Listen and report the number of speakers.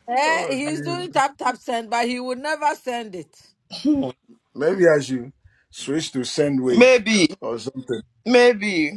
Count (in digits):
3